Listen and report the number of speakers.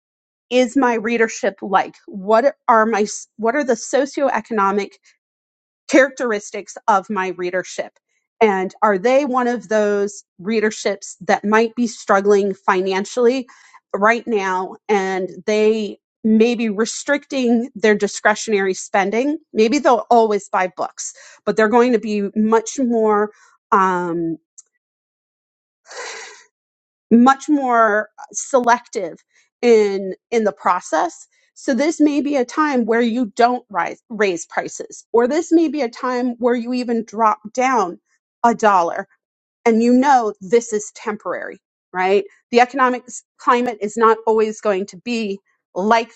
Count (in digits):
1